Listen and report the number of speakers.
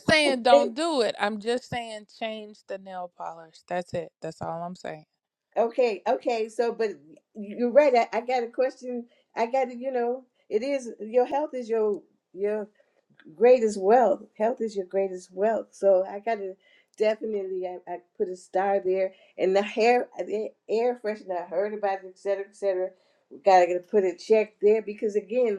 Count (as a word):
two